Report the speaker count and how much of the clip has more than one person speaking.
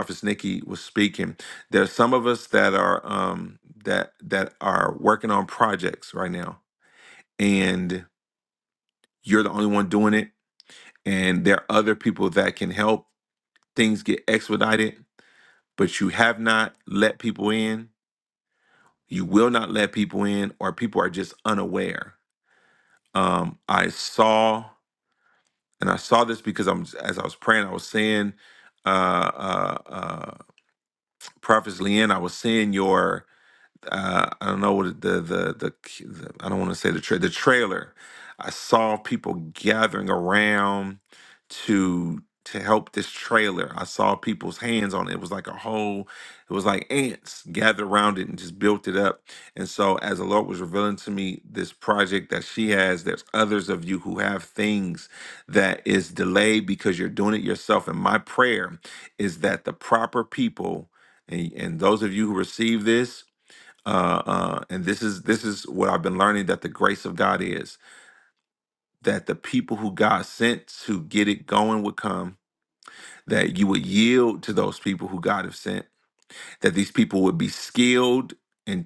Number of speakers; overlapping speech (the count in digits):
1, no overlap